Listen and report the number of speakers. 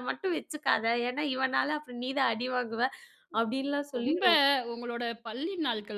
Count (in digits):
2